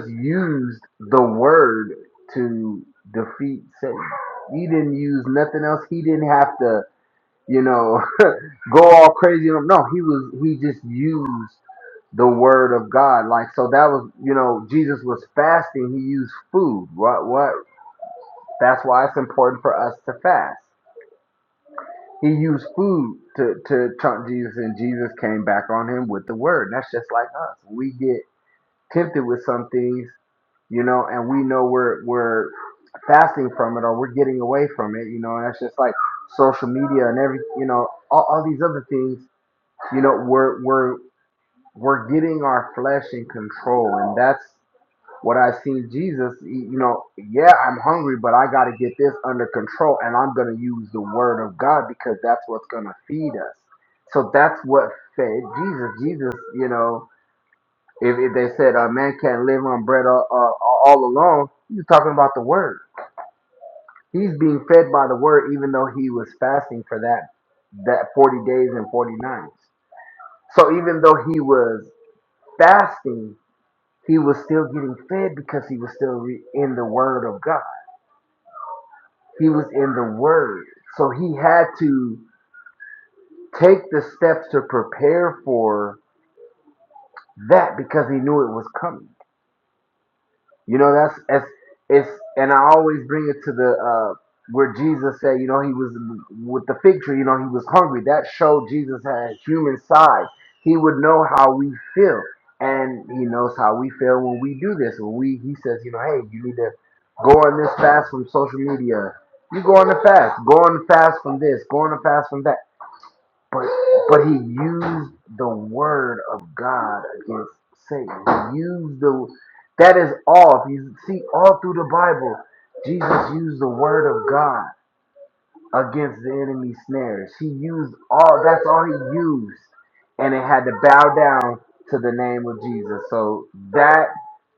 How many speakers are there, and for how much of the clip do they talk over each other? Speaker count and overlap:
1, no overlap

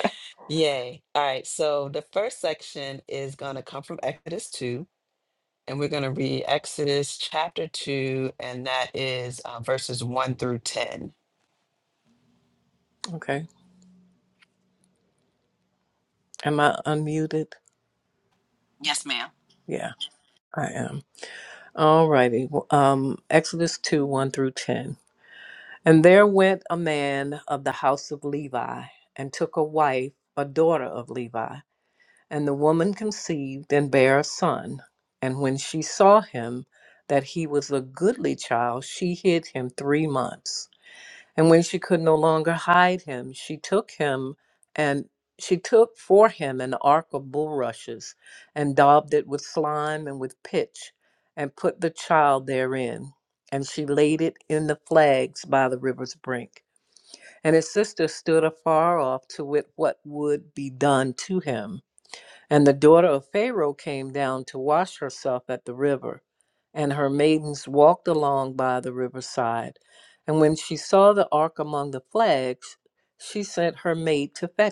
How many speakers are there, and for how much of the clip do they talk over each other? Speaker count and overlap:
2, no overlap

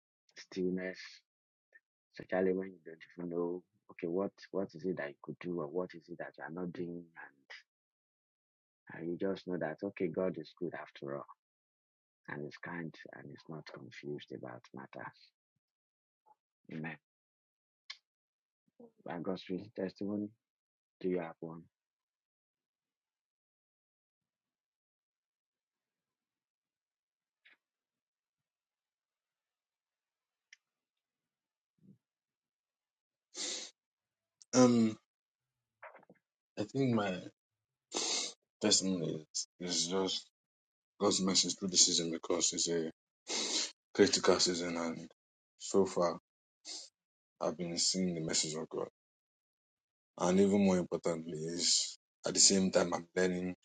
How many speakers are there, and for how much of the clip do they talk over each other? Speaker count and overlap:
2, no overlap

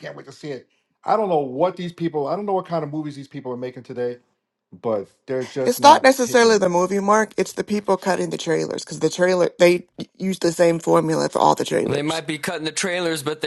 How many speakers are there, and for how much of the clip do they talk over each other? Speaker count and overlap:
3, about 9%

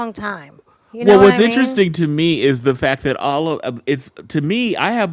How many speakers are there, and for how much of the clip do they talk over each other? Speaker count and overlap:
2, about 15%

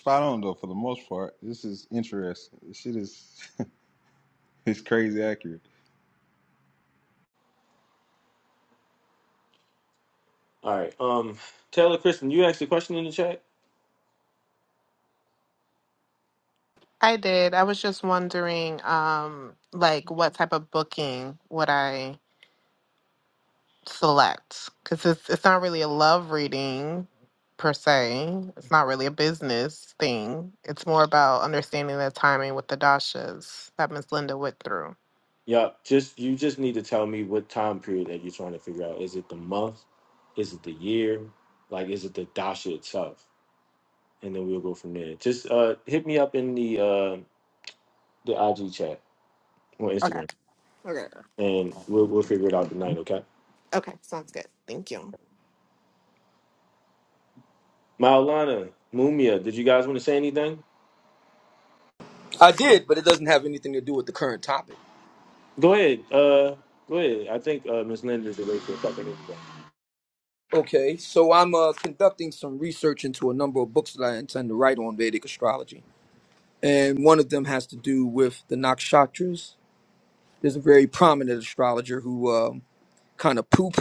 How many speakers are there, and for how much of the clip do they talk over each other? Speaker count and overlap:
4, under 1%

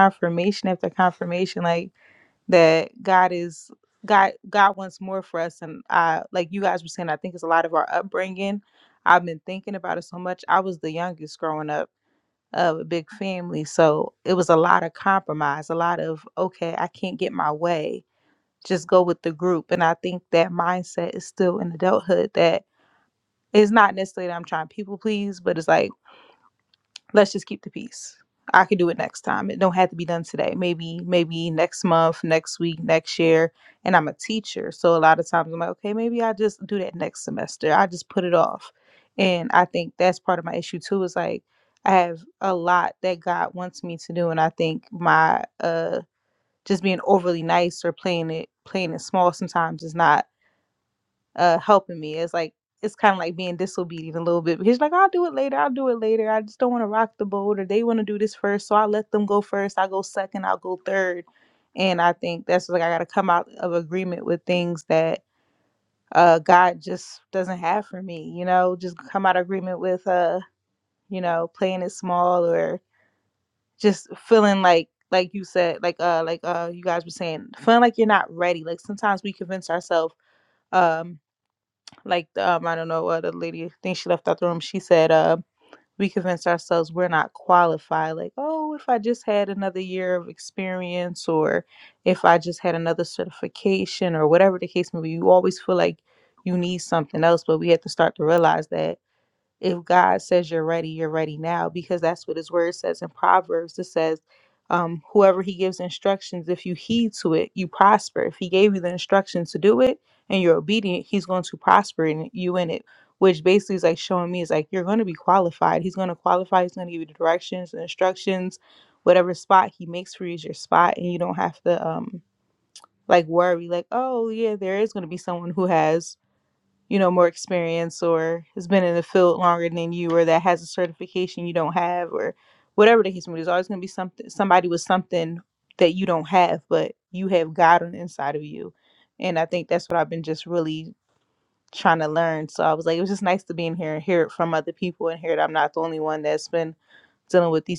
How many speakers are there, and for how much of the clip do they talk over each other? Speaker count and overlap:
1, no overlap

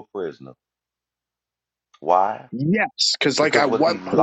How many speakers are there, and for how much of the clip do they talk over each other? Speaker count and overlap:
2, about 20%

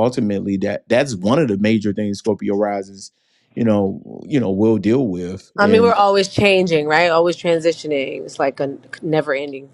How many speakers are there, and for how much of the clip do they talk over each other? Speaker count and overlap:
2, about 4%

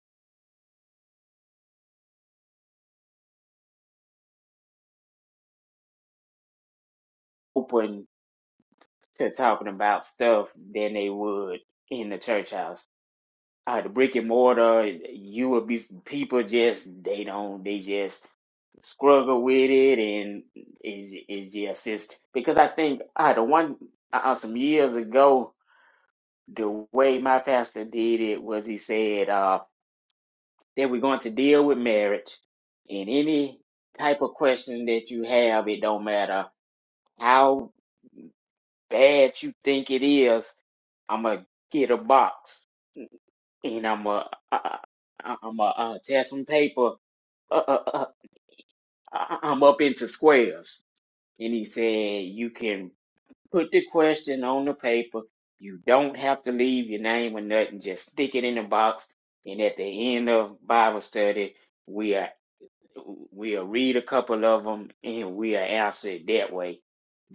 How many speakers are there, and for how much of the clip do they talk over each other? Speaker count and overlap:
1, no overlap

